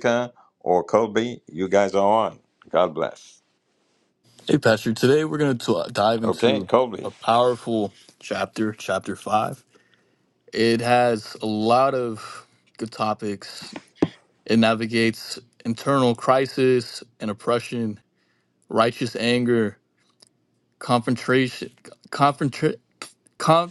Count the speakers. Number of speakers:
2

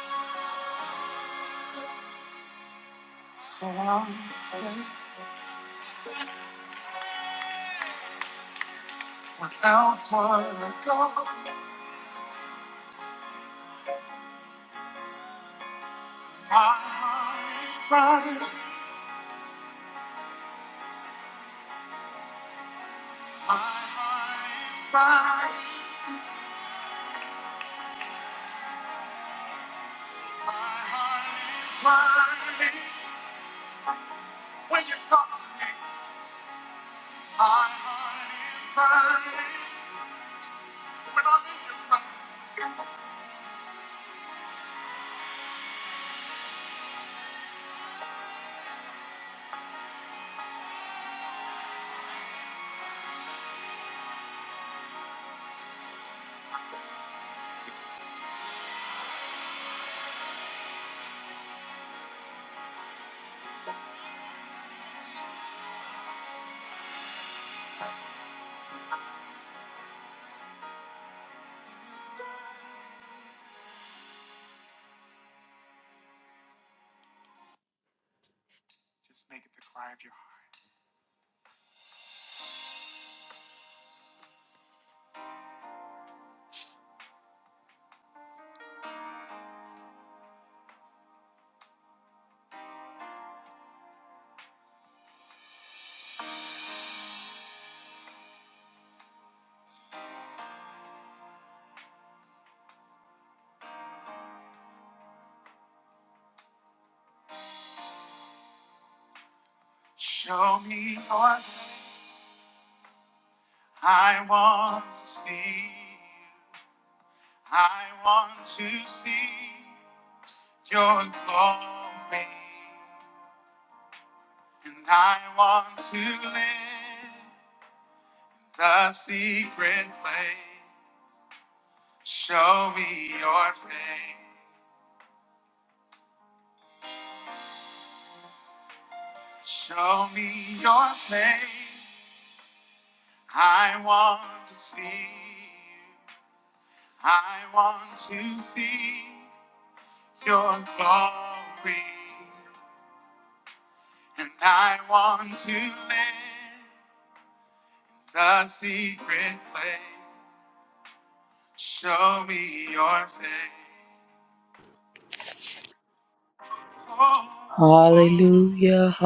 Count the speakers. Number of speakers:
2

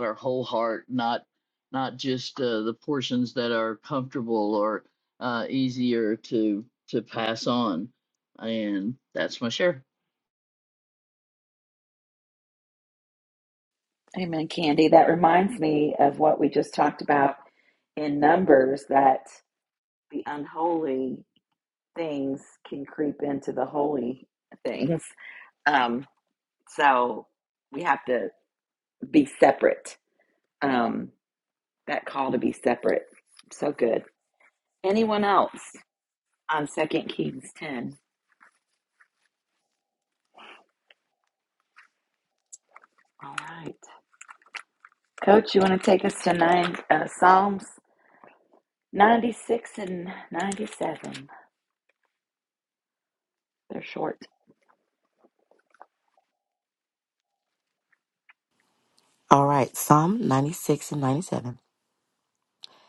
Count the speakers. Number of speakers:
3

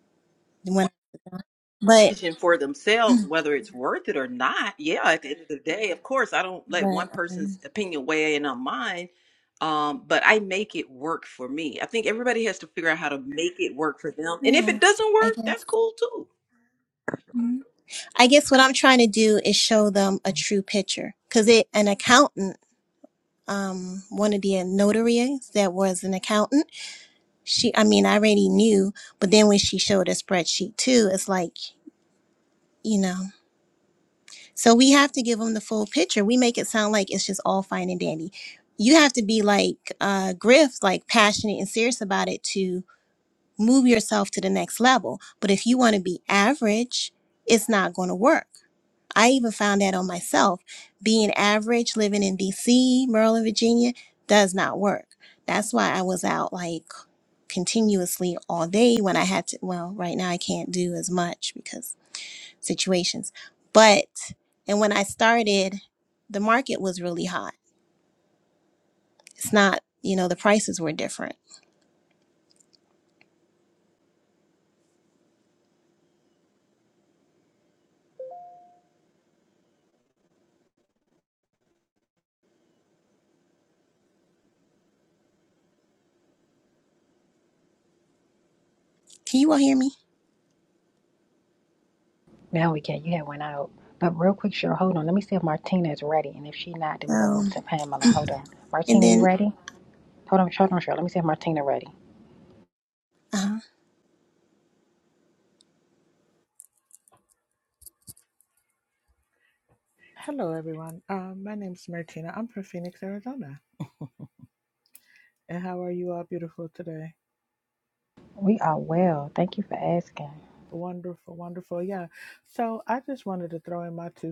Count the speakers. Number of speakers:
4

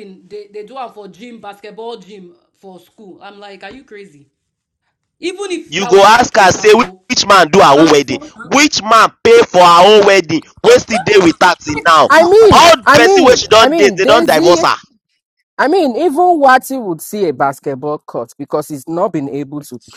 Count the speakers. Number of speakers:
3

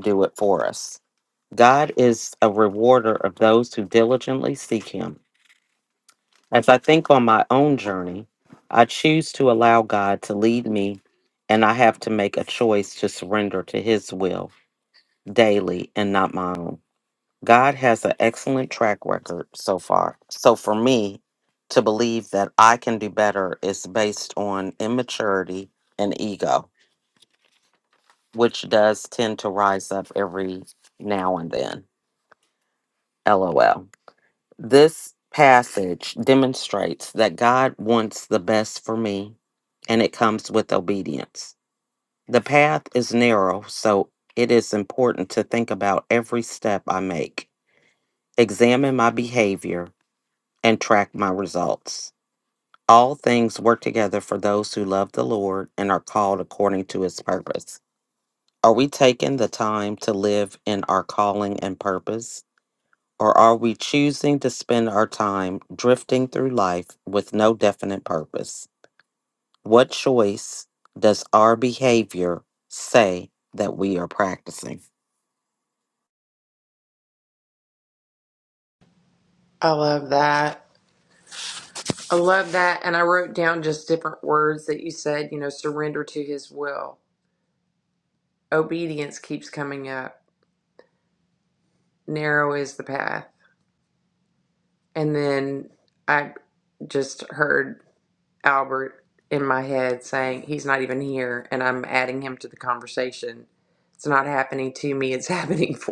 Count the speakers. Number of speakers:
2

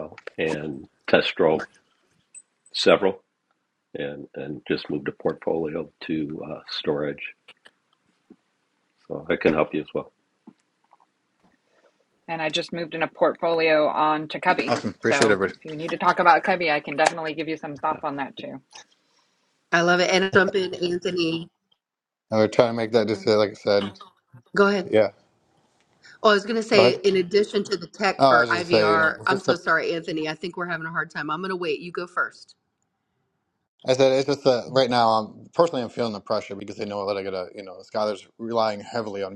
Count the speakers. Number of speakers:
4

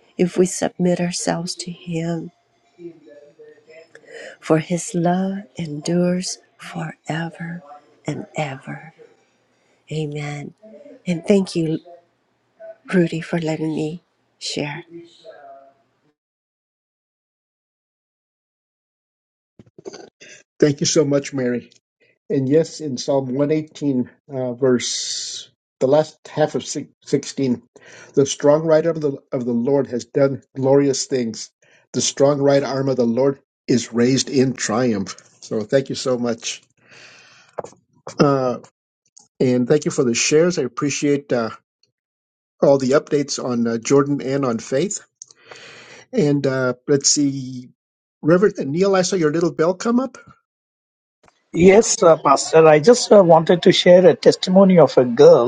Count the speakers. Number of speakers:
3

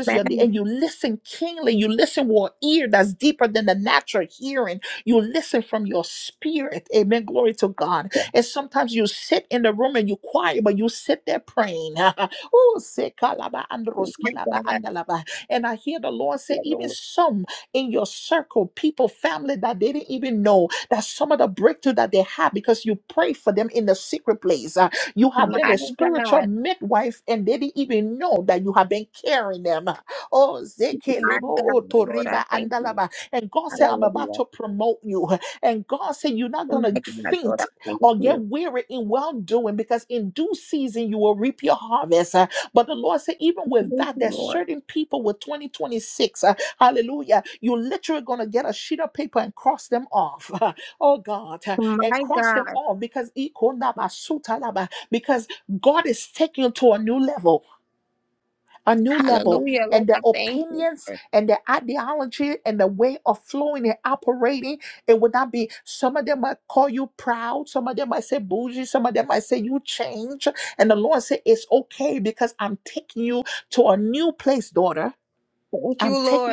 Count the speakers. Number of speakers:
2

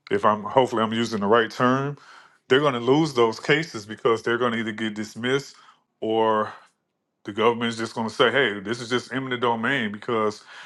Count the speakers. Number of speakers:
1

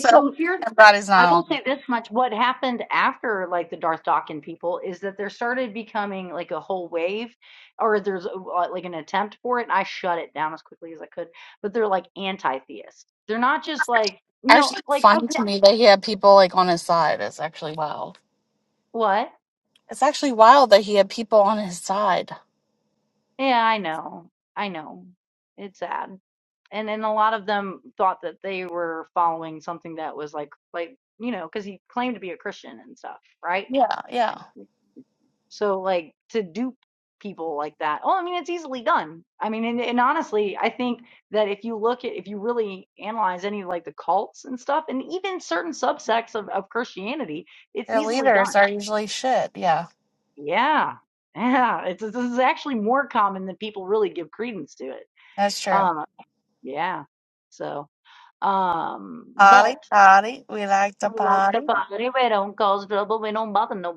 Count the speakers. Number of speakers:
2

